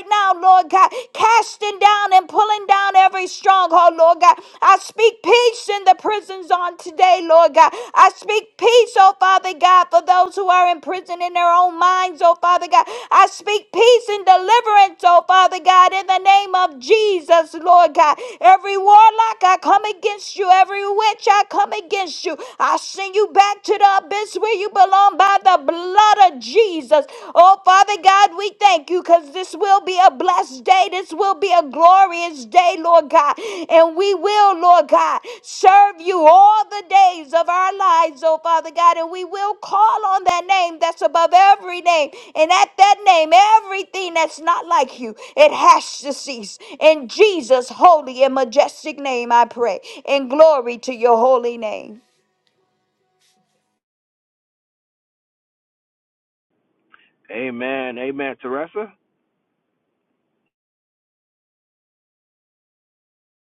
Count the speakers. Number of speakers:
two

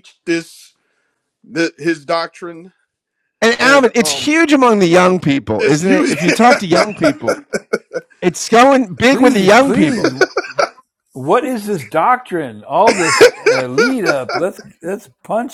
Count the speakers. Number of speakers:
three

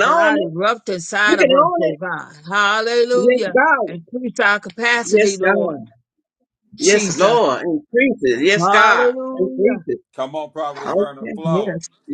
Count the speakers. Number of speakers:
three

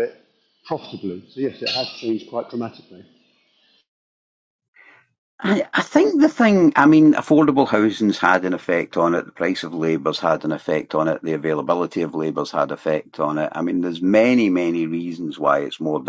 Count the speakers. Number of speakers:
two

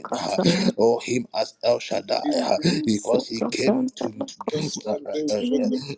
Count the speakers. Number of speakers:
two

